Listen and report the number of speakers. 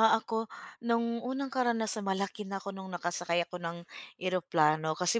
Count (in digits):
1